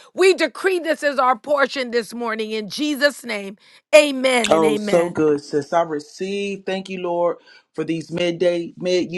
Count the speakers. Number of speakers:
2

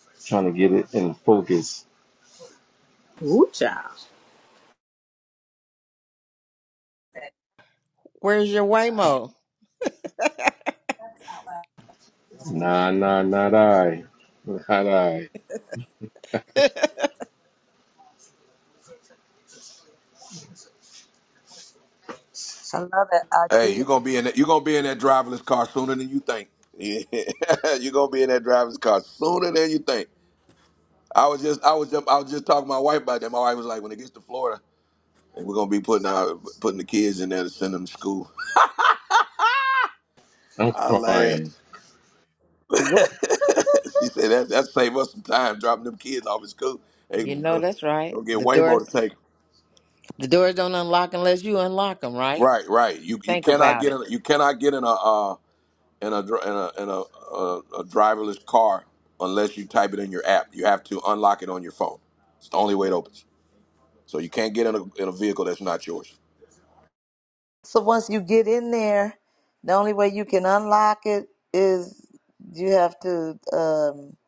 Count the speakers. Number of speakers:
5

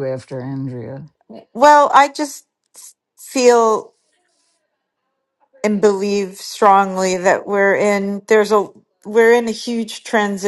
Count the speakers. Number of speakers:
2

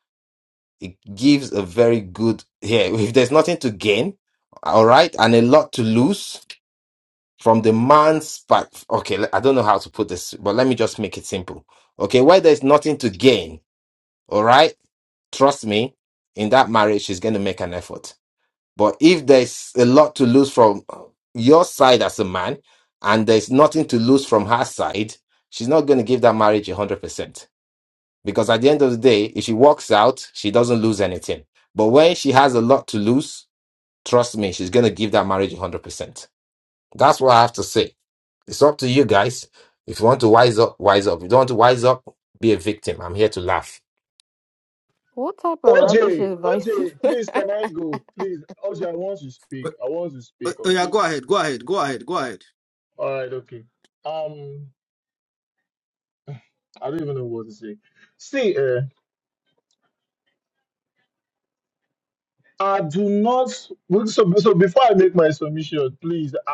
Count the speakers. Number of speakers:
4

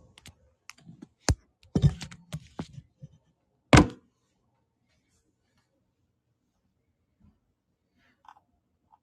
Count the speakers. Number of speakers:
0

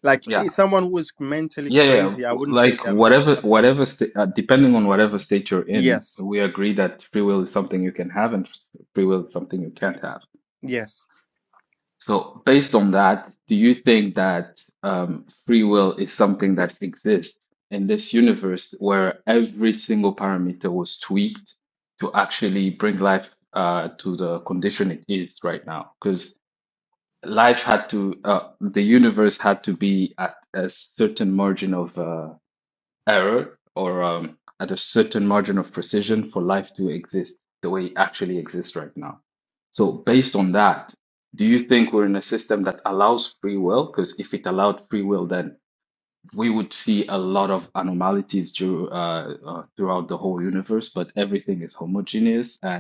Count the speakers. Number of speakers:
2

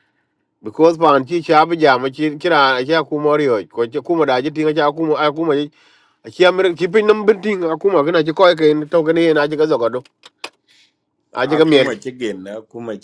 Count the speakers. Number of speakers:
2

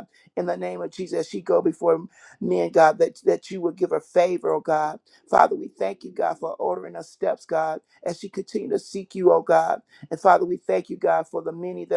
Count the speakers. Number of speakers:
1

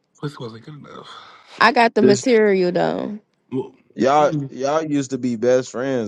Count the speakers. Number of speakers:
3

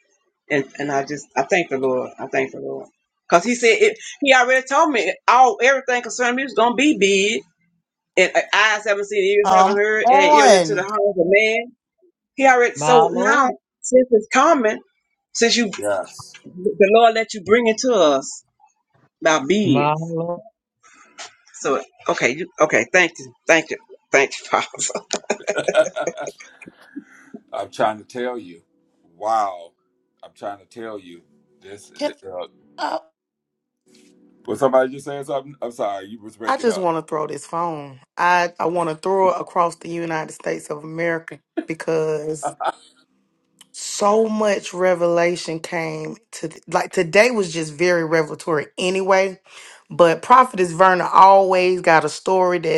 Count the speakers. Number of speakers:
4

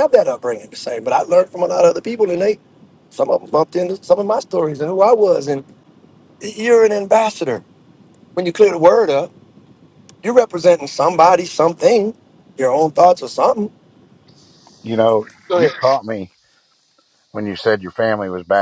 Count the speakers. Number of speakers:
2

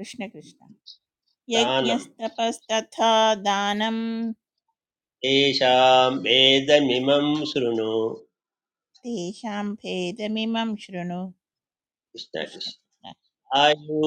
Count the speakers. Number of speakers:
2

